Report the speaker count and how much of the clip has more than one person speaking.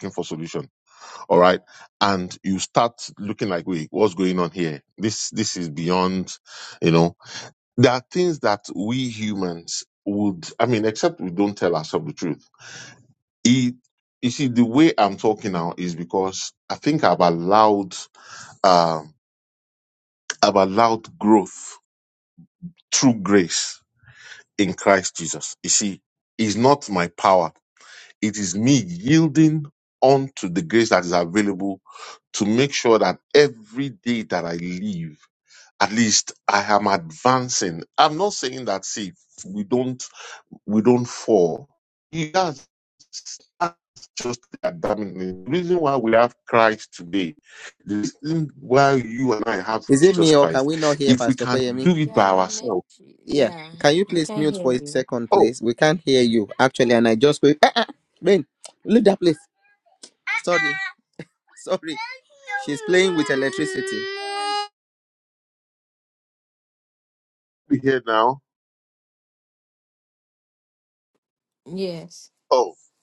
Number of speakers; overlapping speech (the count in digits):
3, about 5%